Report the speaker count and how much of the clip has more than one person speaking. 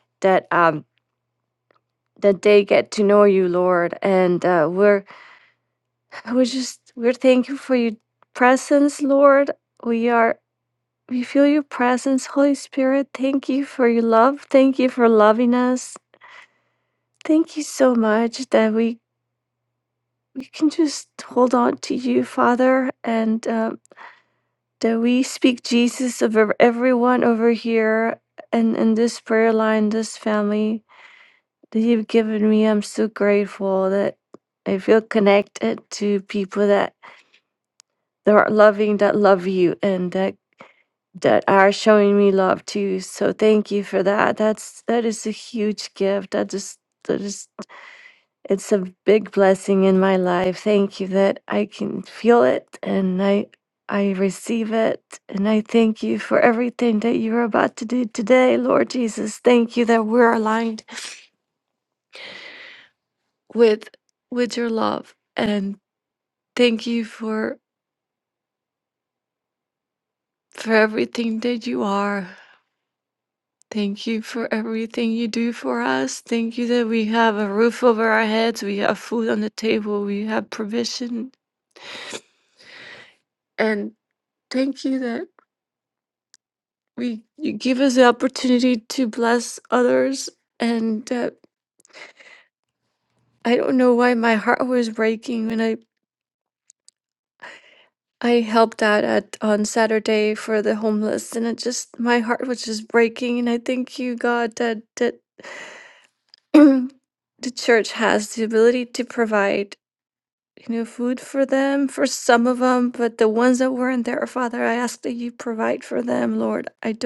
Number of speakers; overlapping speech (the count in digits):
1, no overlap